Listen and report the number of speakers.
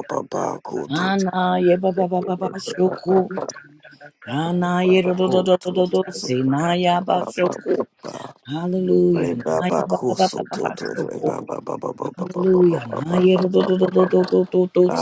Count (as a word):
two